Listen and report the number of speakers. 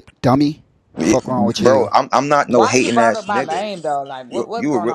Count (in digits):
3